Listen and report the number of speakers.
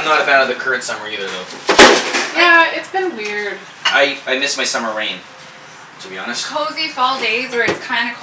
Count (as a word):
three